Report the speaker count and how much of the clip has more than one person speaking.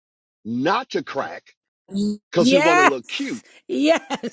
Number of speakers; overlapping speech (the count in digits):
2, about 12%